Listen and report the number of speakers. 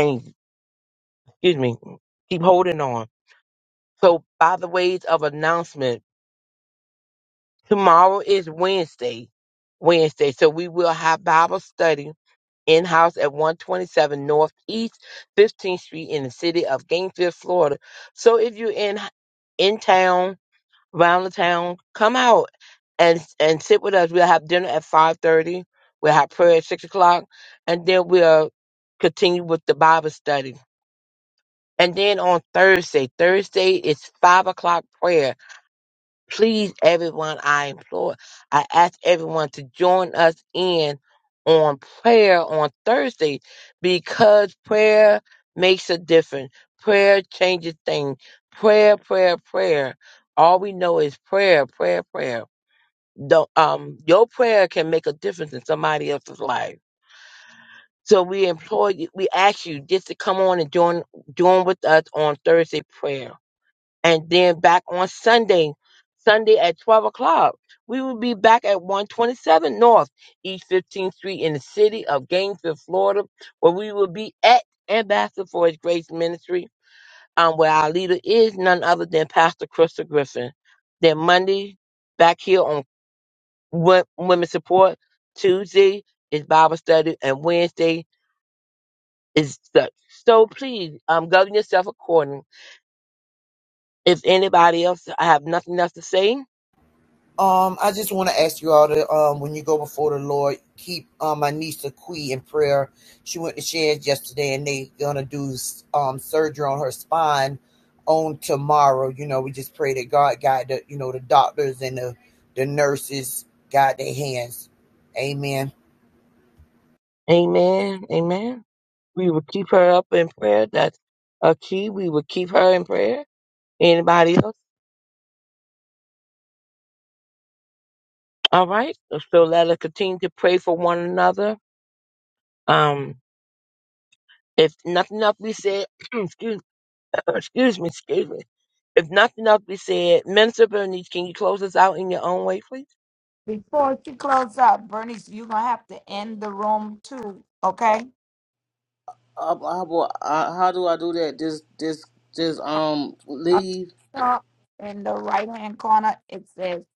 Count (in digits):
4